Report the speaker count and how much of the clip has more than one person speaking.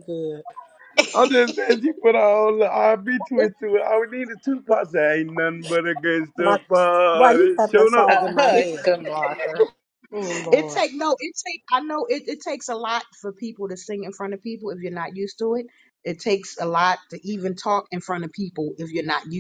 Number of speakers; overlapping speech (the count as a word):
four, about 13%